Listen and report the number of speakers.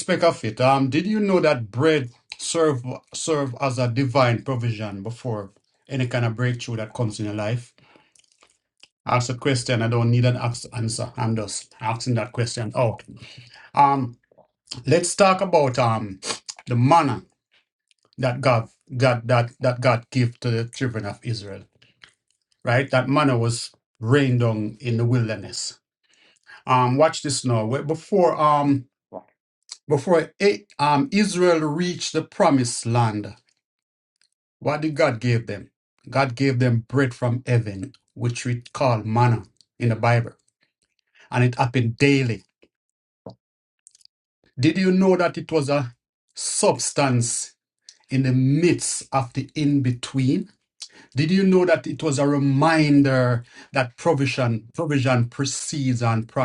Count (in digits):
1